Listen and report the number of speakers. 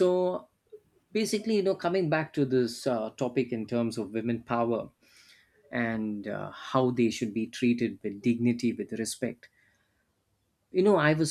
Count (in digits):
1